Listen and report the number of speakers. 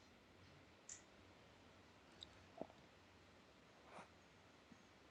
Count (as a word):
zero